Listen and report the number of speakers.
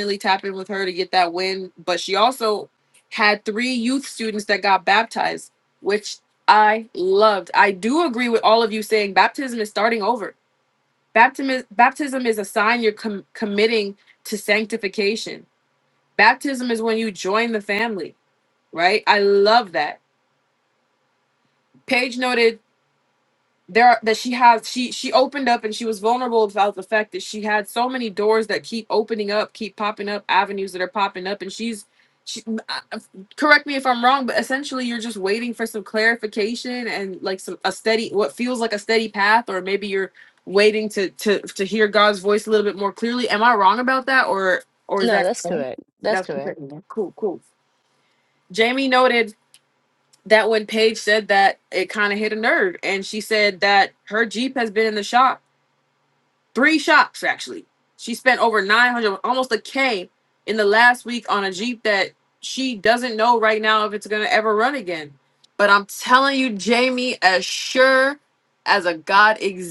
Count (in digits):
2